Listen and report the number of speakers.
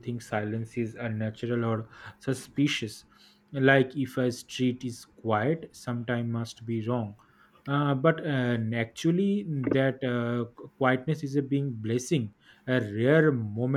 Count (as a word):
one